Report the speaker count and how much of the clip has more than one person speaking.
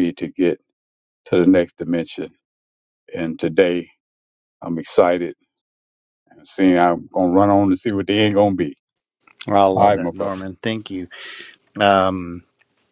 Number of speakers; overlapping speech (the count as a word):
two, about 4%